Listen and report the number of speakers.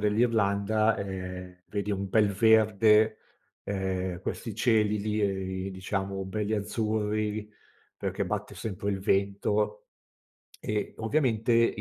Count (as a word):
one